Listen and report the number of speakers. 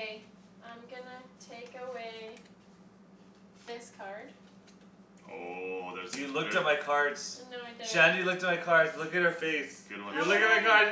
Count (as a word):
three